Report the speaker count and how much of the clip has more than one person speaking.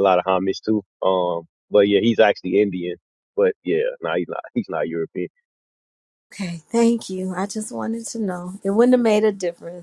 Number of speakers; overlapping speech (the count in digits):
2, no overlap